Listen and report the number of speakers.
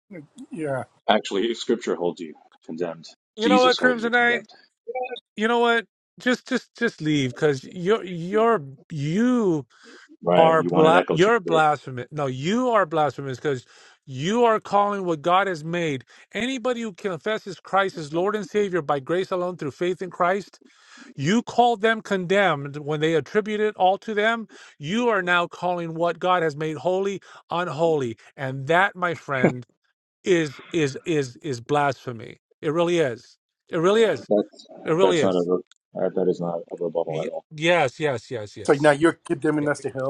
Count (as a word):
three